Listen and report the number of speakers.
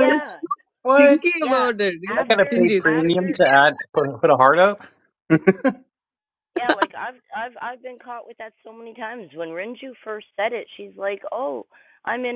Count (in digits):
3